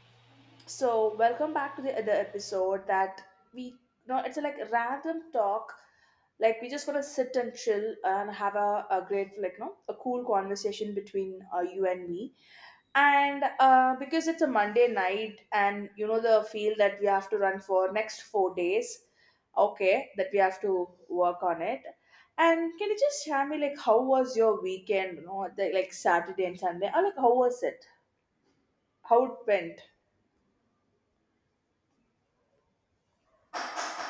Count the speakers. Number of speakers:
1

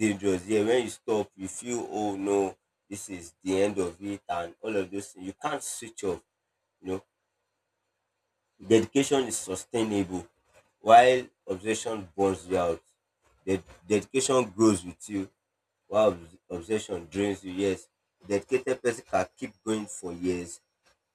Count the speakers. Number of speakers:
1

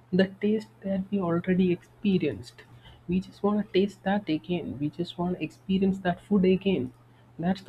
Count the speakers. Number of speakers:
1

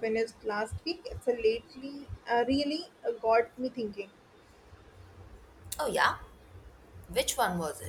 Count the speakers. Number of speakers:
2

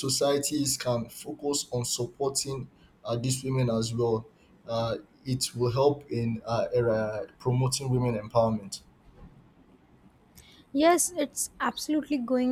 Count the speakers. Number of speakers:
2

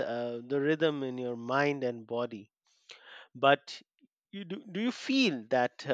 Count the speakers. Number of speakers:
1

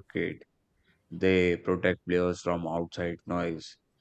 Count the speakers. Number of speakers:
1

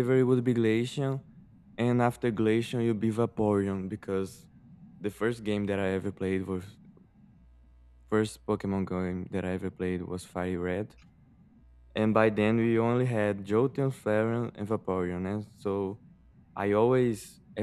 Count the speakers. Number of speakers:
1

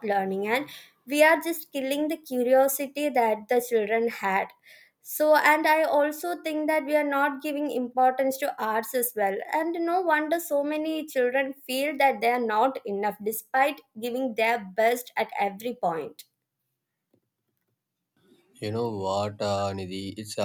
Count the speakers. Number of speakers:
2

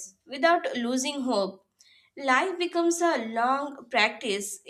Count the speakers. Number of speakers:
1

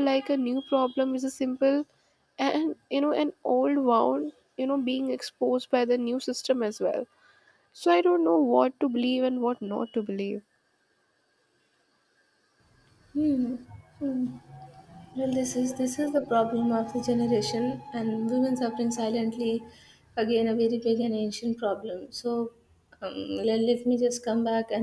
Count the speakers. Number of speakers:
2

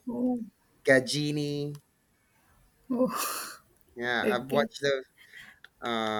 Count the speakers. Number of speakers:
2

